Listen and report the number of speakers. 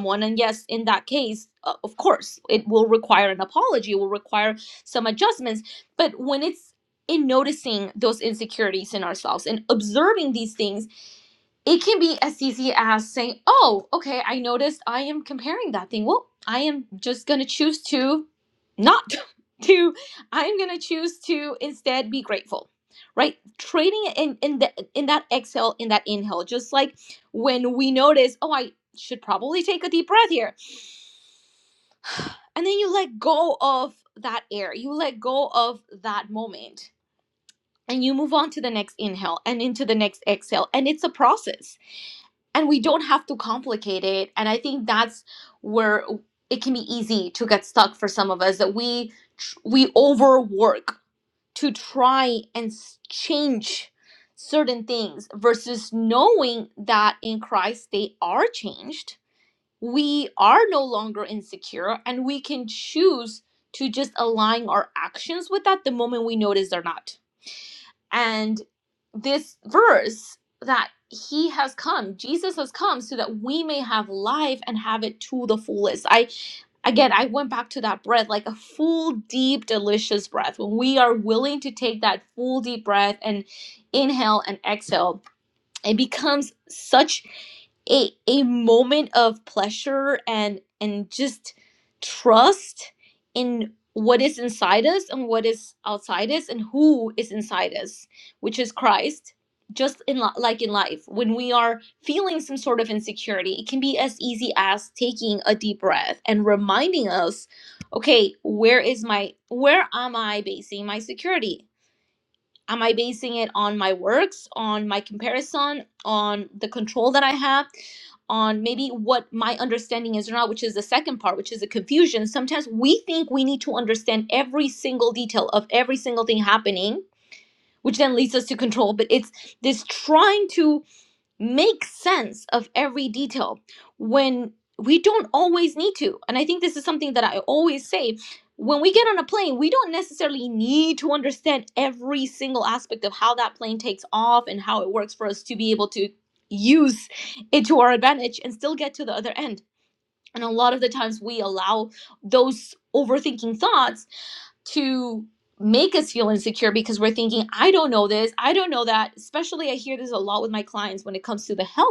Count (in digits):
1